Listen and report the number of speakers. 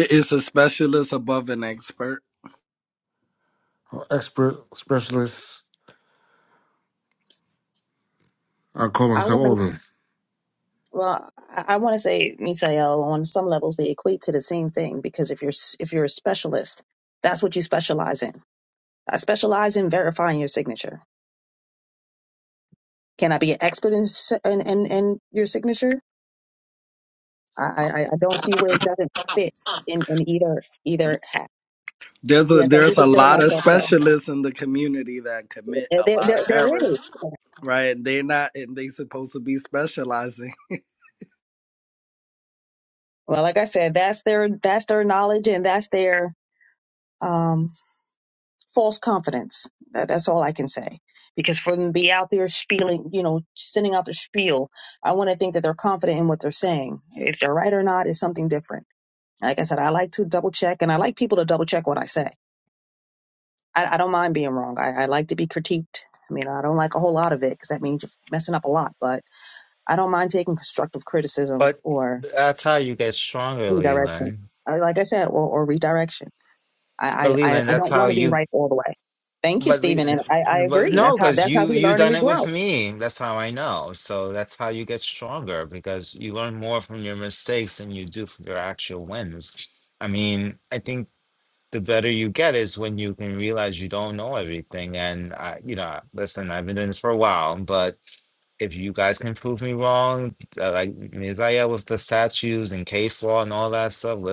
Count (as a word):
four